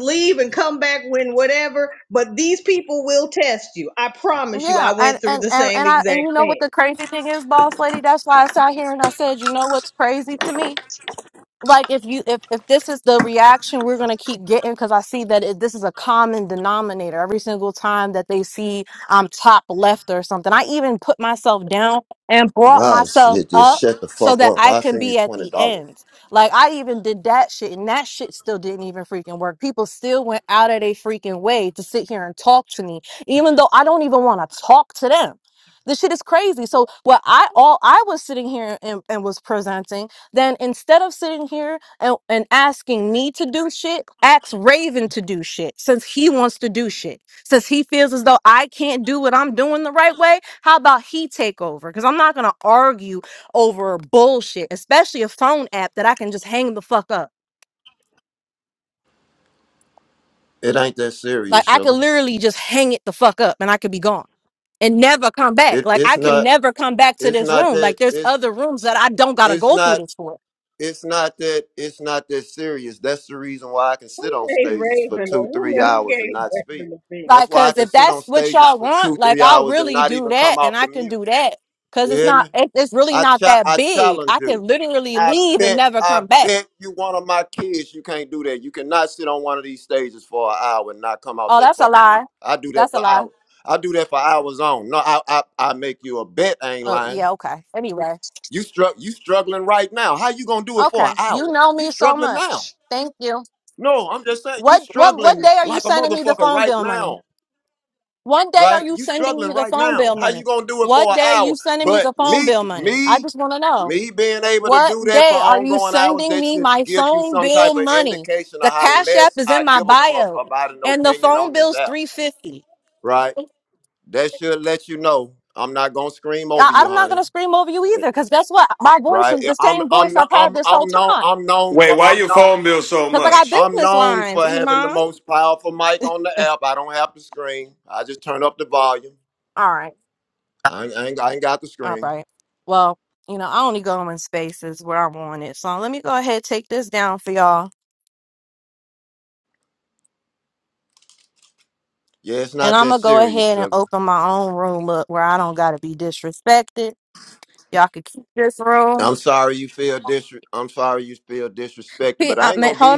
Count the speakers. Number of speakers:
four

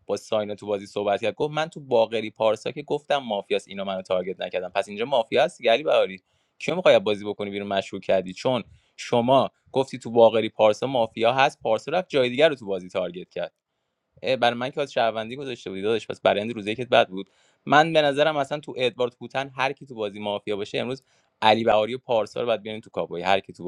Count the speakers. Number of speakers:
one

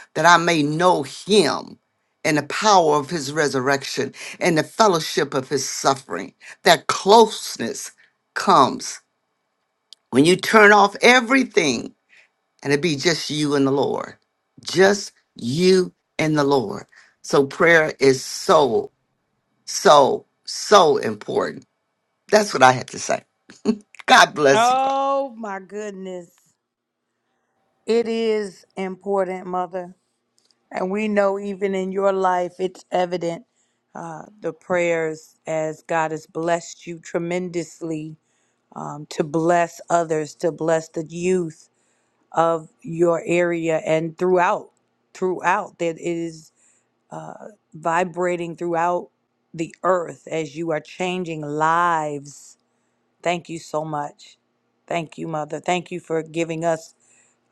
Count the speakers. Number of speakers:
two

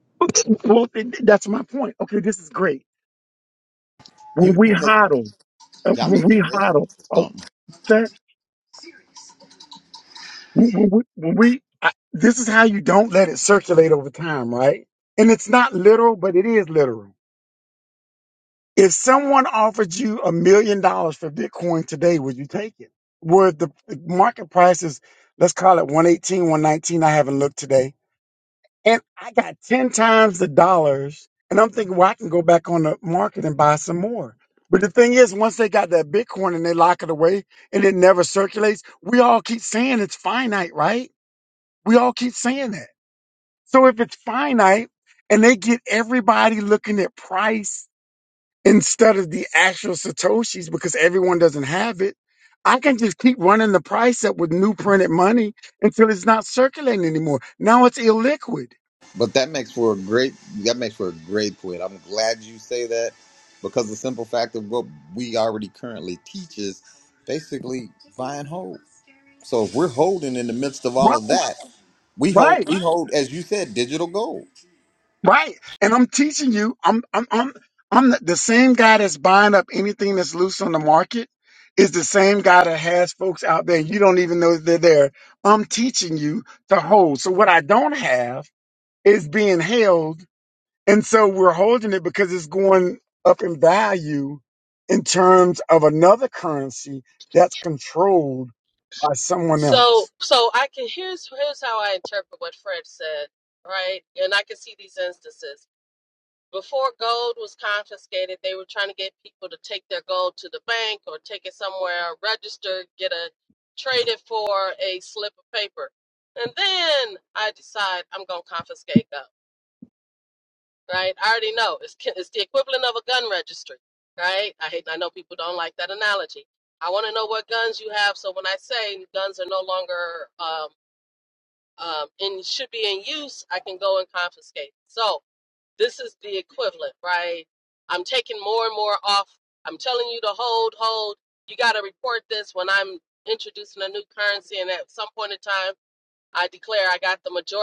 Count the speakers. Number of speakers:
three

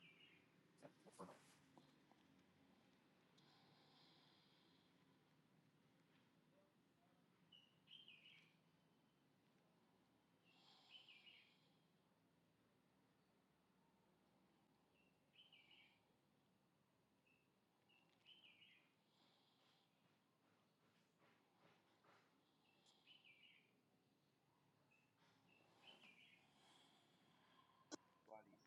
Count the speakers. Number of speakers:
zero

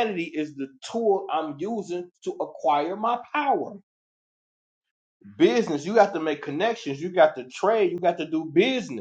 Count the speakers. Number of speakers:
one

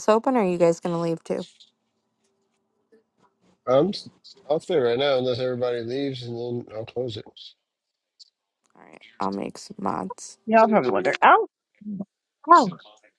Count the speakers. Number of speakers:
three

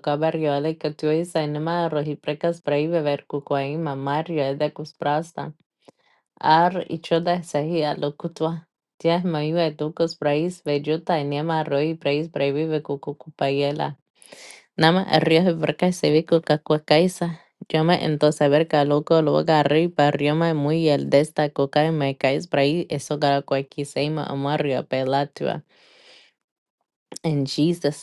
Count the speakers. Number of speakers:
one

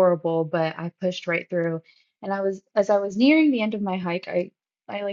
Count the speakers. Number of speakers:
one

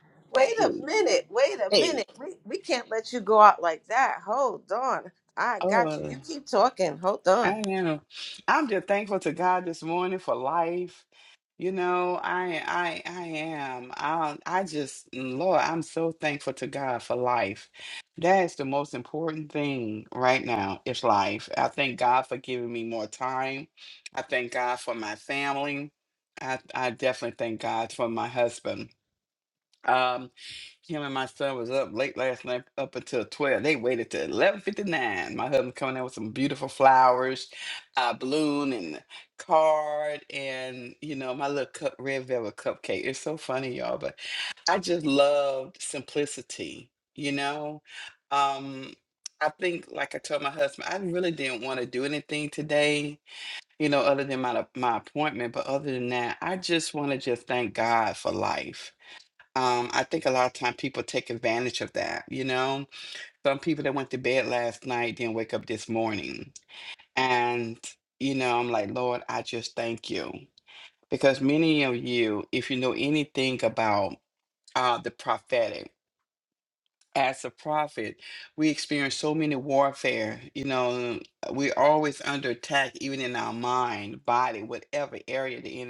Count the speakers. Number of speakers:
two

